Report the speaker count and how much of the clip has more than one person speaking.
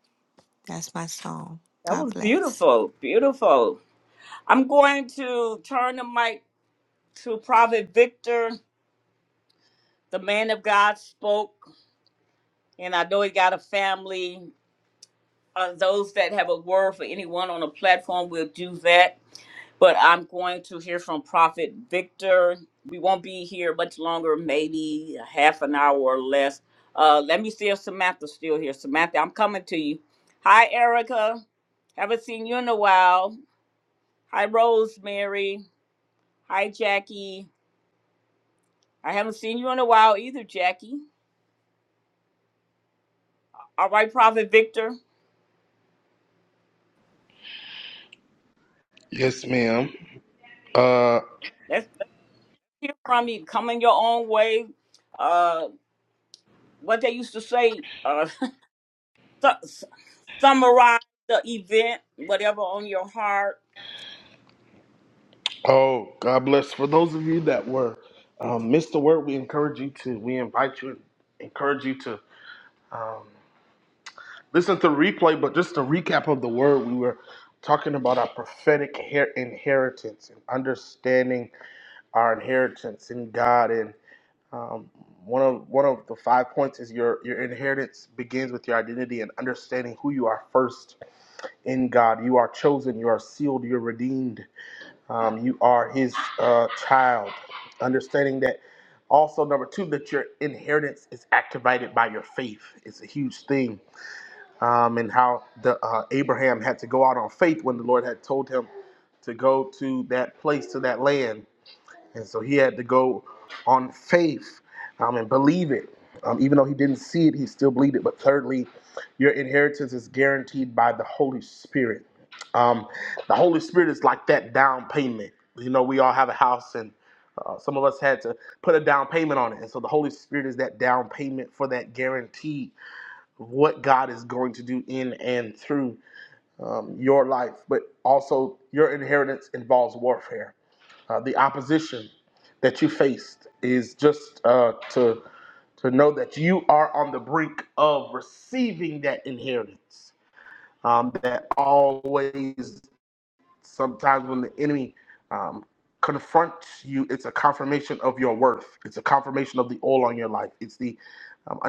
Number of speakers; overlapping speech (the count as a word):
three, under 1%